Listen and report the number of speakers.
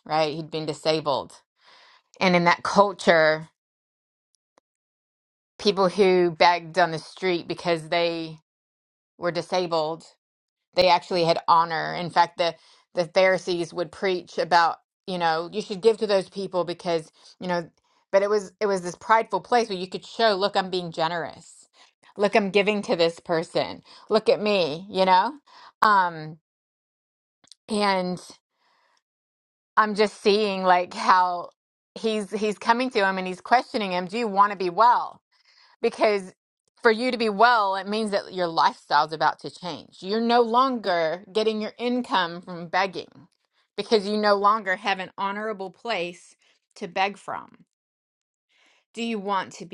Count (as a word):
one